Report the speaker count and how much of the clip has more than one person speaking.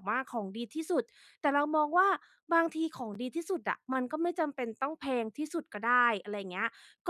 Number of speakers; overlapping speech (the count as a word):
one, no overlap